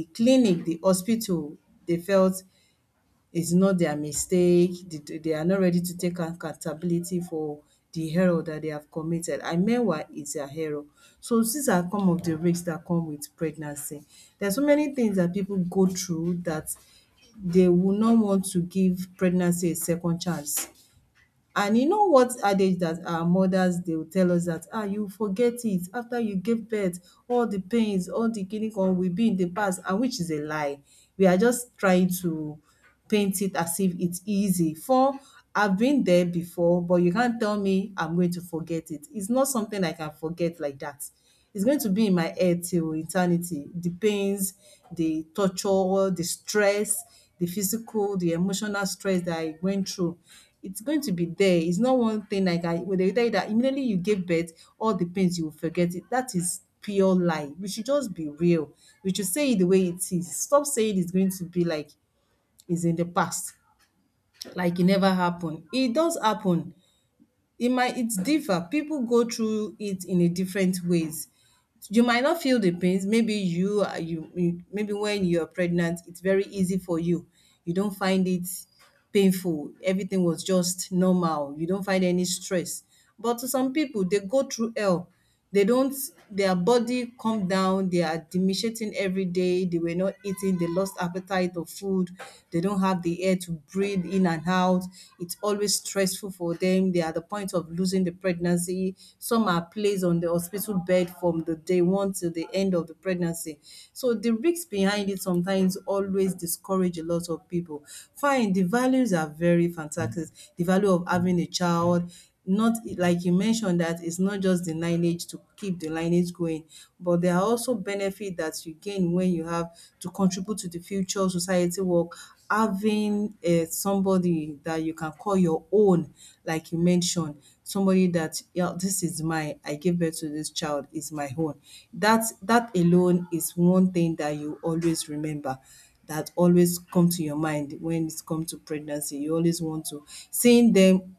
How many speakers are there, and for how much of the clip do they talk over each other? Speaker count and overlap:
one, no overlap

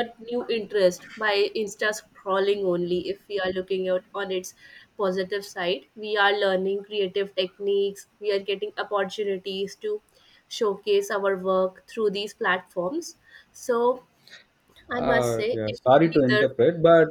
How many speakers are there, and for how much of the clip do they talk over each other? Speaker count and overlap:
two, about 9%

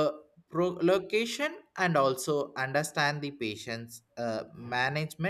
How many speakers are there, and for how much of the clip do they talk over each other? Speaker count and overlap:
one, no overlap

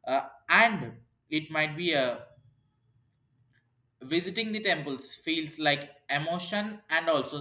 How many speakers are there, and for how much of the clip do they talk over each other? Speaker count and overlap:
one, no overlap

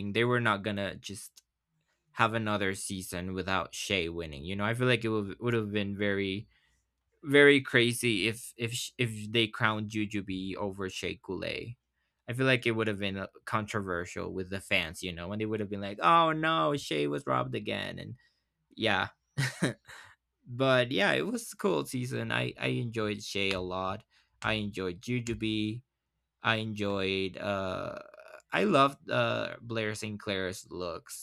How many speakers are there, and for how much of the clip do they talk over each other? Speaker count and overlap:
one, no overlap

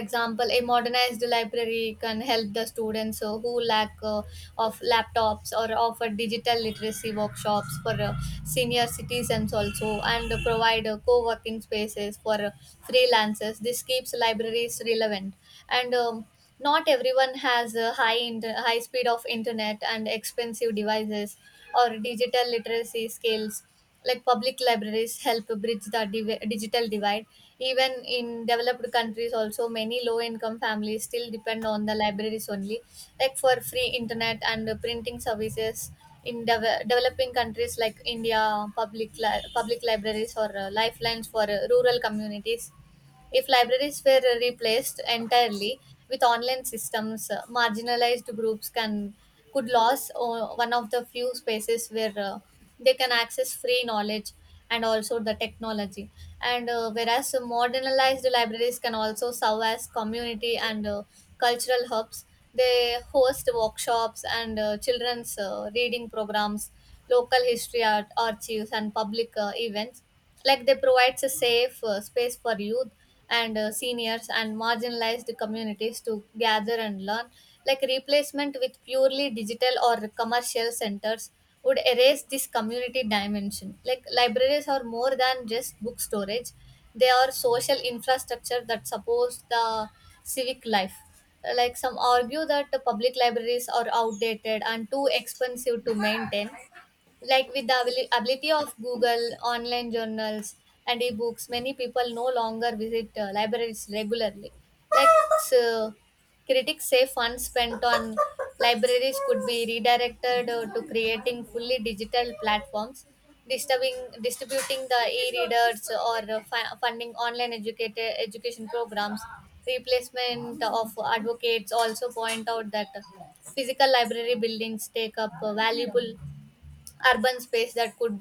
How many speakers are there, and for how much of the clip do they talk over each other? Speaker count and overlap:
one, no overlap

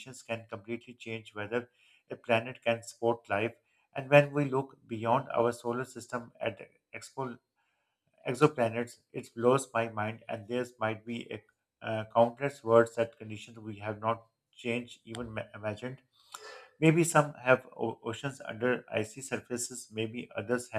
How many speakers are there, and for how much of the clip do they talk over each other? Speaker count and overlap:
one, no overlap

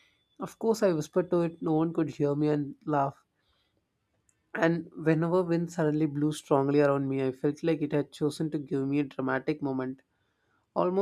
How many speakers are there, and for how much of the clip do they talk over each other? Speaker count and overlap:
one, no overlap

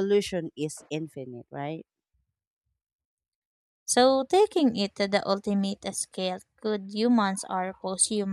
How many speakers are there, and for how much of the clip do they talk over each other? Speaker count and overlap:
two, no overlap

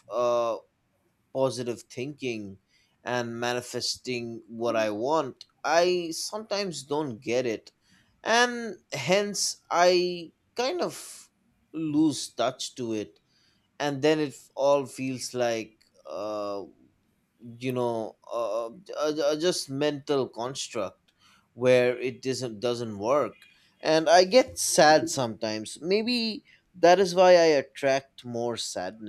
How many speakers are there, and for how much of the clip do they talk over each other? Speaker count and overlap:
one, no overlap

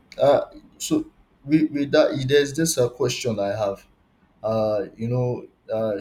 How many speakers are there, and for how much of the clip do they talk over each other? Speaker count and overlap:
one, no overlap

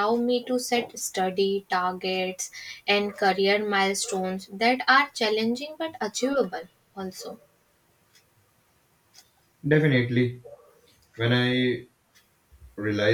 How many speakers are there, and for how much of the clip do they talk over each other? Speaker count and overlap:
two, no overlap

